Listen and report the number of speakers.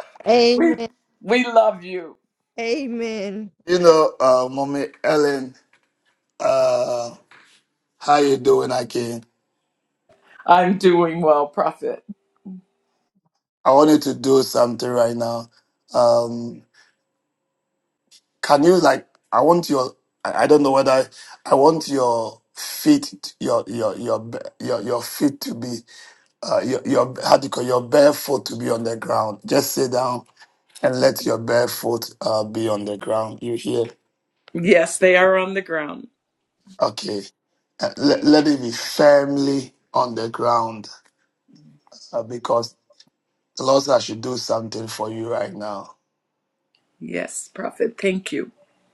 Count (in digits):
3